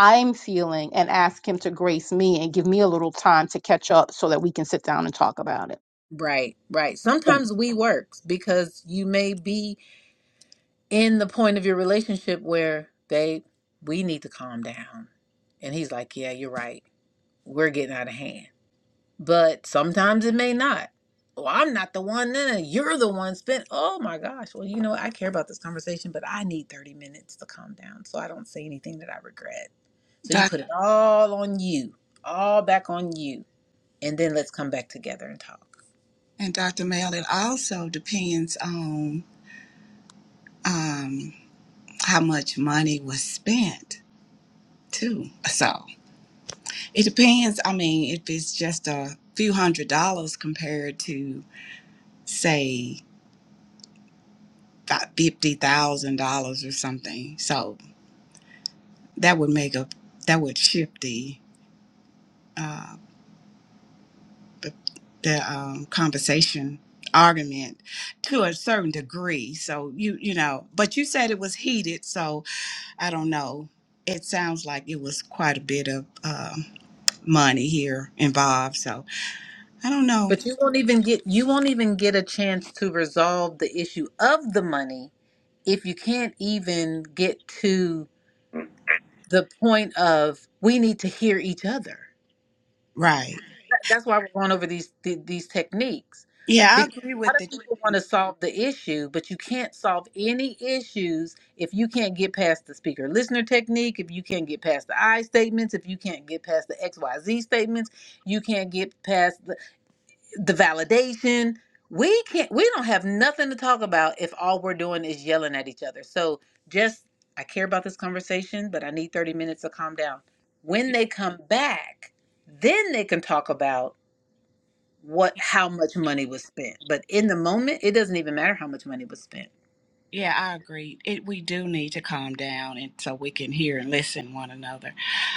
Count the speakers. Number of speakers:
3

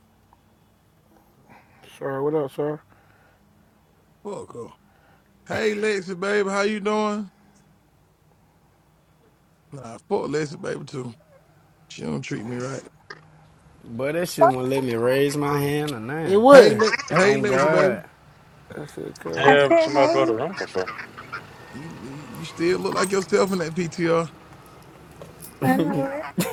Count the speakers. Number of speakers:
5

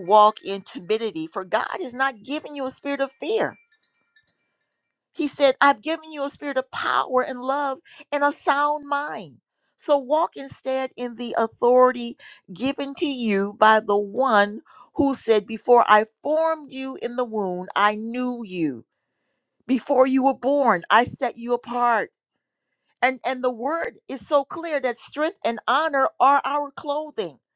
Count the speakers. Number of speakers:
1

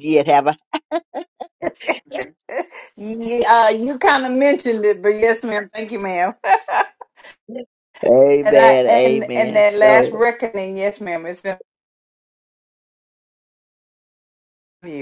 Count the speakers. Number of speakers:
2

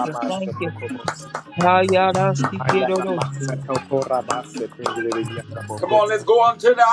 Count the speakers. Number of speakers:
3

